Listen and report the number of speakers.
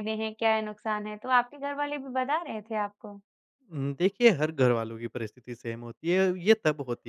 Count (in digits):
2